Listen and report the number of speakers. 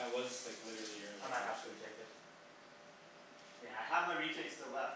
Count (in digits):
2